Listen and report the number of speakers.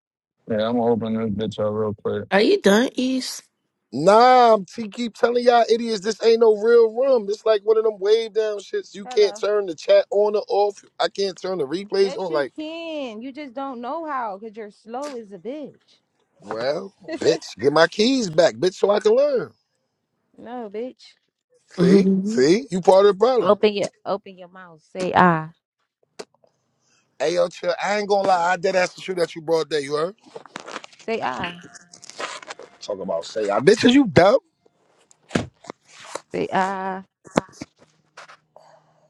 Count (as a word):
four